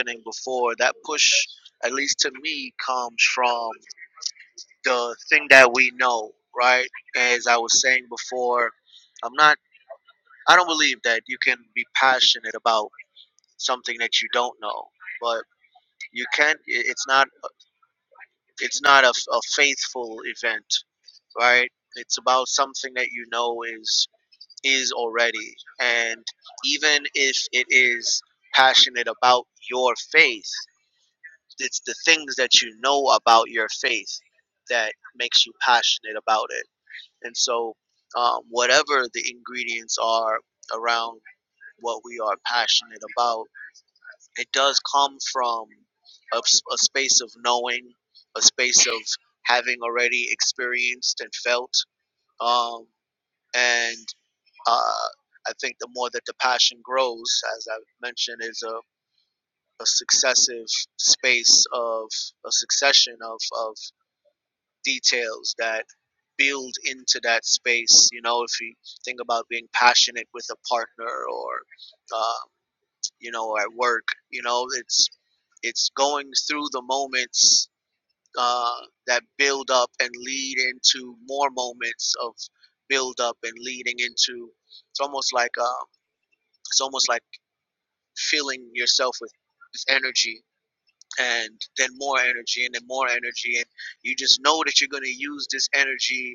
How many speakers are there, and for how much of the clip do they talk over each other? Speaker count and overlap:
one, no overlap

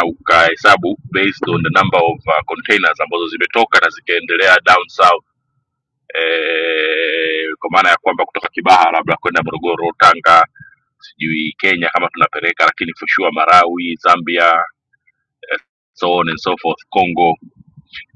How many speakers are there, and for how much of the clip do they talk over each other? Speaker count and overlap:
one, no overlap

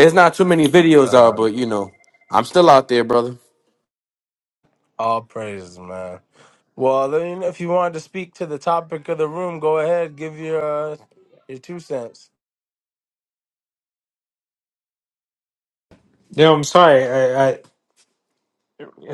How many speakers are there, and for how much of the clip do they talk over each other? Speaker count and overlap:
three, about 2%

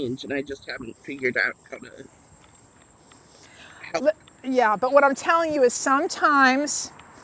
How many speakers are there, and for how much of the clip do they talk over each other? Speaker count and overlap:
two, no overlap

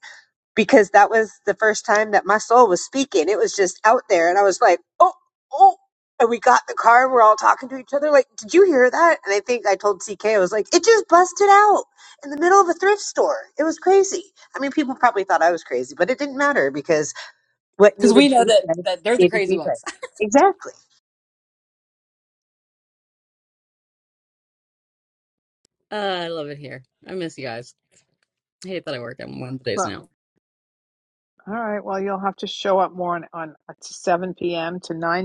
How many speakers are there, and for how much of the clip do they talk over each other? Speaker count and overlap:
three, about 5%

